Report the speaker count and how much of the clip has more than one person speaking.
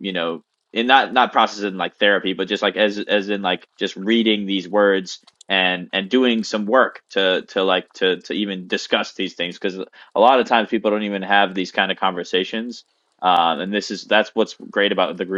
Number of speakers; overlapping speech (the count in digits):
1, no overlap